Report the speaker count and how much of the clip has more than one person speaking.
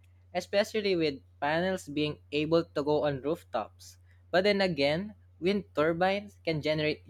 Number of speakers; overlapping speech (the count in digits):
1, no overlap